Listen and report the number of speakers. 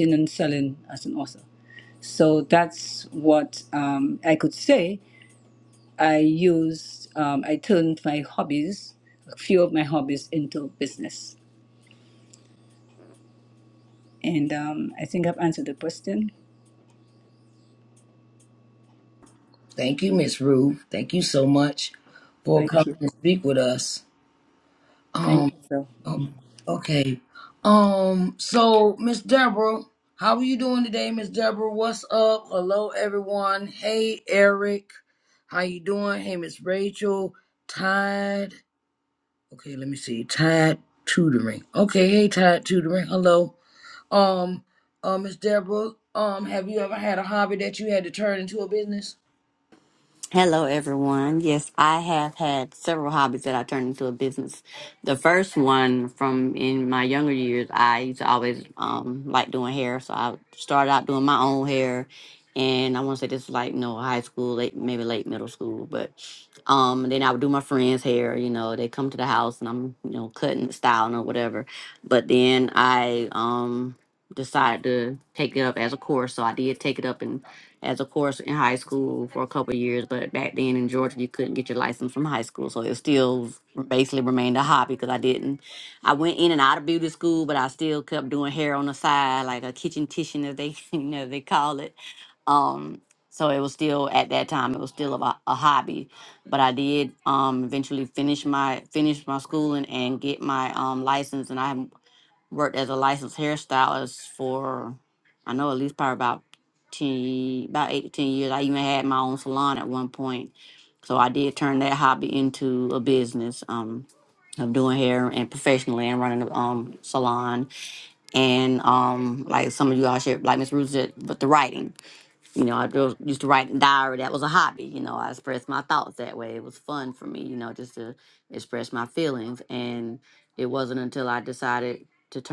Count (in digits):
3